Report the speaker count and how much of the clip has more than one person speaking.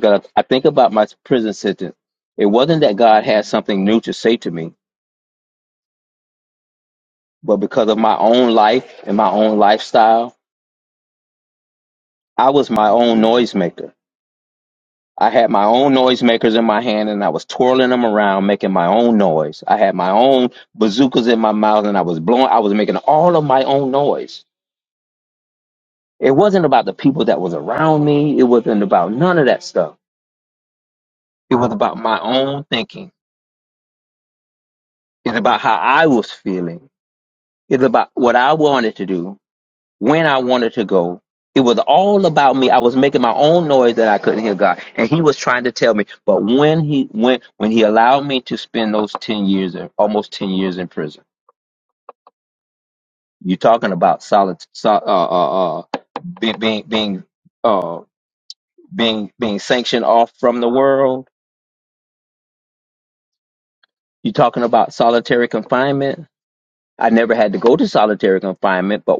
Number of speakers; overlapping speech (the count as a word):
one, no overlap